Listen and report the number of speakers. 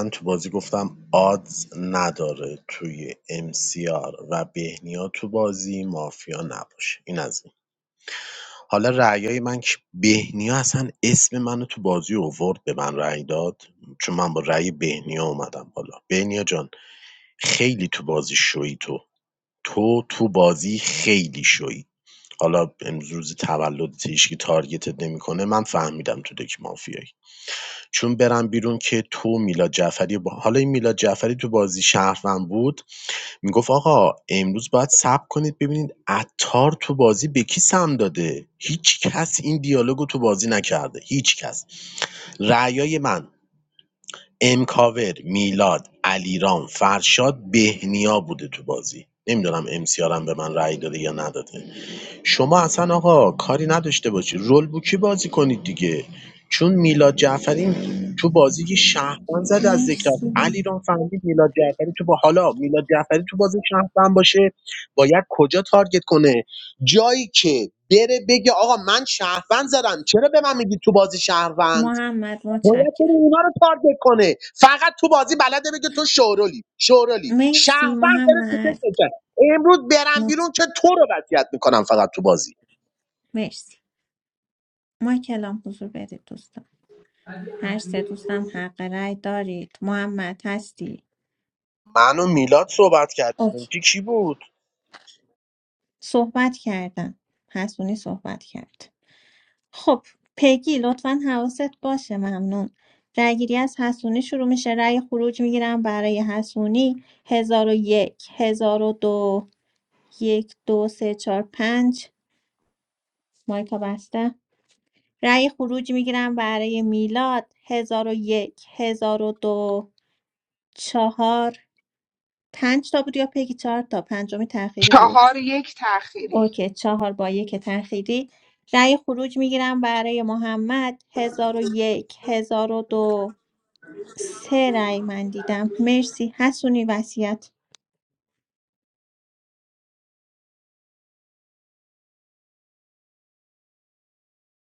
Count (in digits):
3